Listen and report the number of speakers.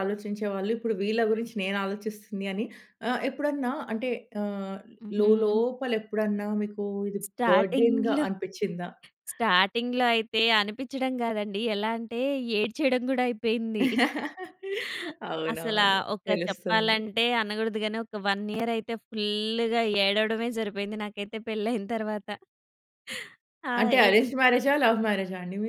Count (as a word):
two